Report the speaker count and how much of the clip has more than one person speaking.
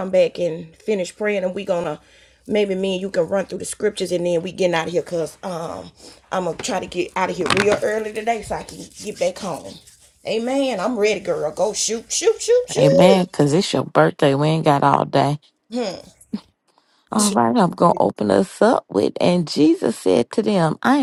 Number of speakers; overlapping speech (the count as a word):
two, about 2%